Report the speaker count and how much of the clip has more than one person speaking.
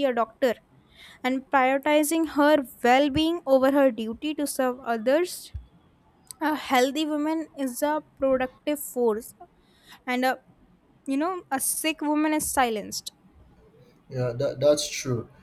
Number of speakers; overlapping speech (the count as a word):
two, no overlap